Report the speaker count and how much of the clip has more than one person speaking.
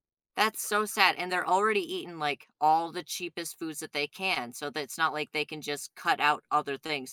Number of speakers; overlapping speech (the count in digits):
1, no overlap